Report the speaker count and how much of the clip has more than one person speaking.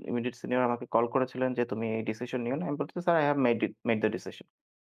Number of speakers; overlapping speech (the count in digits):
1, no overlap